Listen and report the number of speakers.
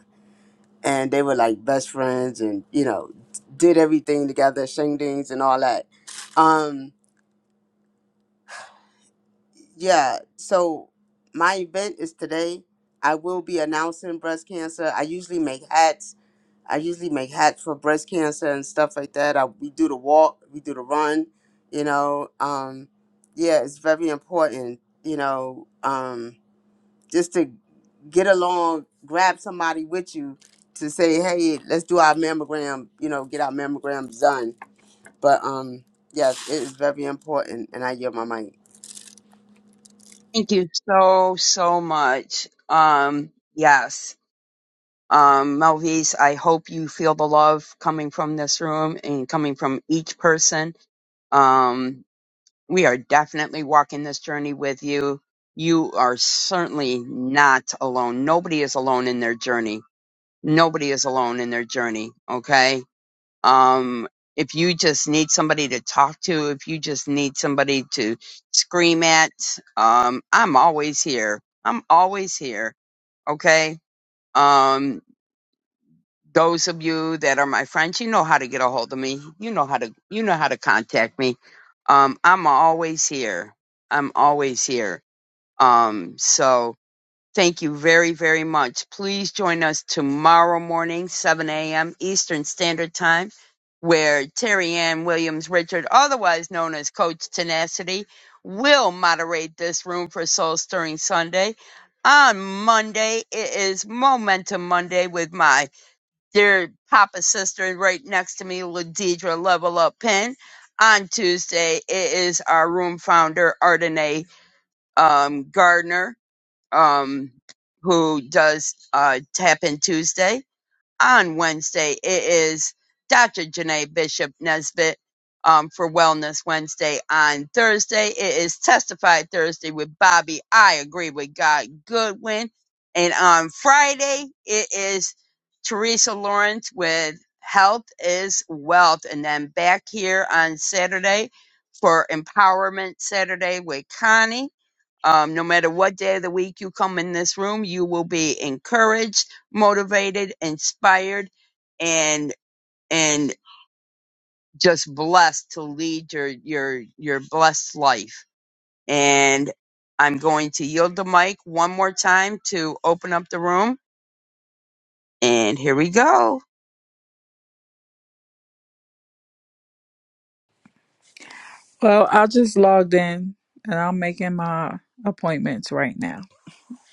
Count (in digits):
3